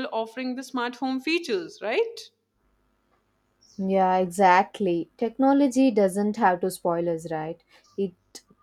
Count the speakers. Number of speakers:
two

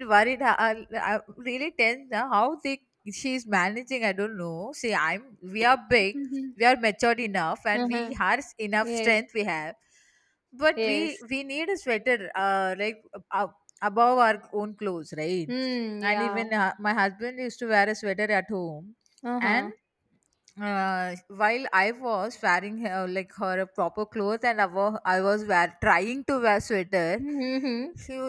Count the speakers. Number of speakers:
two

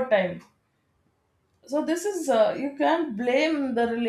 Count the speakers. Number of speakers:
one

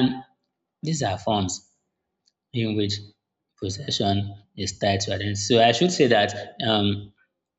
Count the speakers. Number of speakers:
one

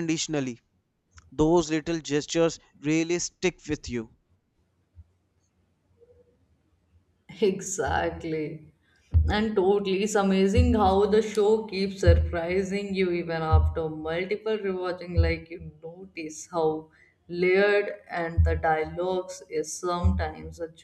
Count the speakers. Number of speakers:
two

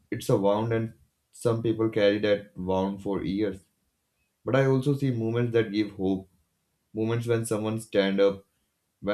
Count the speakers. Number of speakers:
one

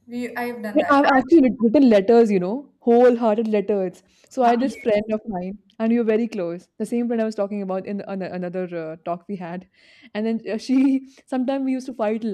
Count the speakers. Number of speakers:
two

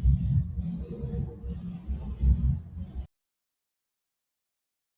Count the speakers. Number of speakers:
zero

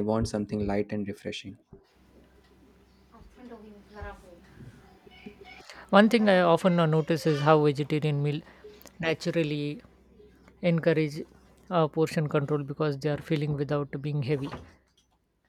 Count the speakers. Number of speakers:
two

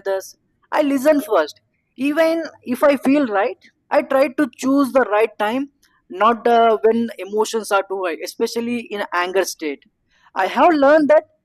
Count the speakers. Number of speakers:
one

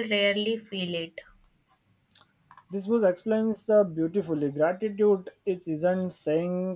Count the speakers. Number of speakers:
two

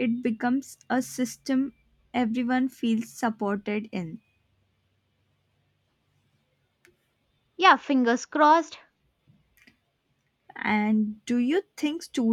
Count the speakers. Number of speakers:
two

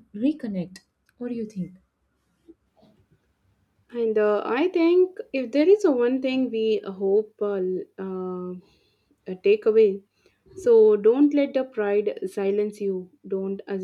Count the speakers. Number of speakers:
two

